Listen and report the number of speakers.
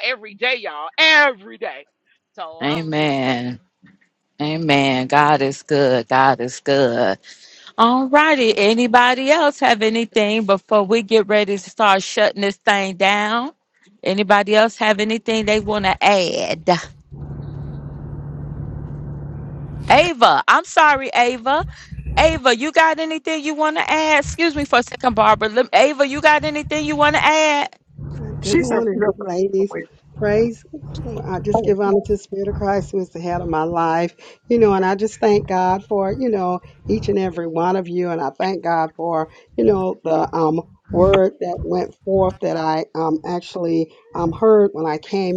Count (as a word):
three